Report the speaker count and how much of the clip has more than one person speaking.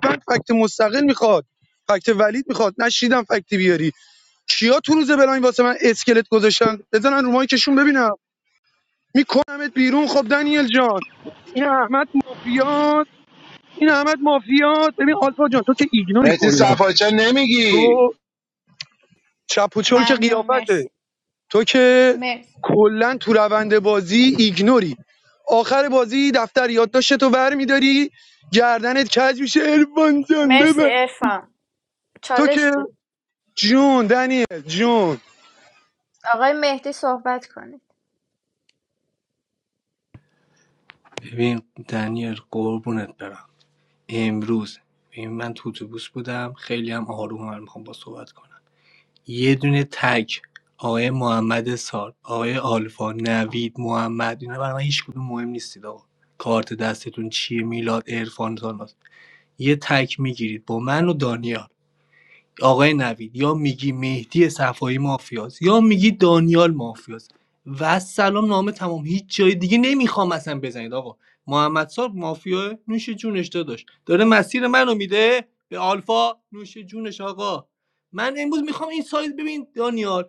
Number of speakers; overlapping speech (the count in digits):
4, about 4%